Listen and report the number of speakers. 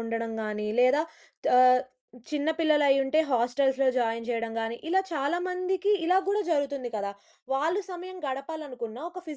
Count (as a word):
one